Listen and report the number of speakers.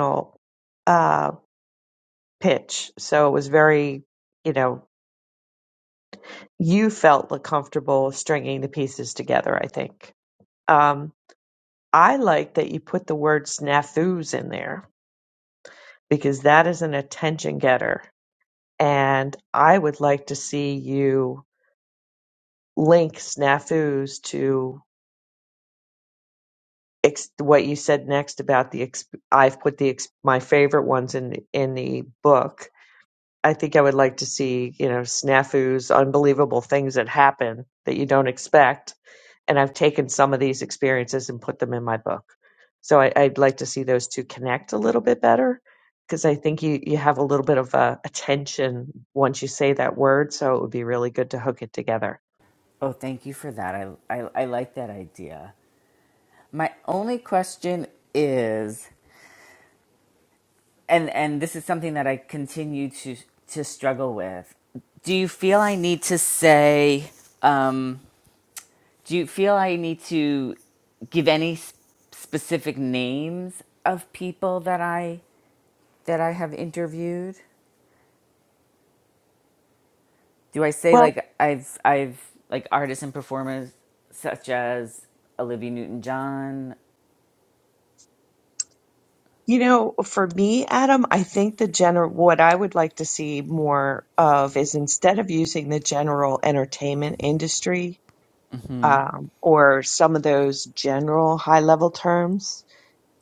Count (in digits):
2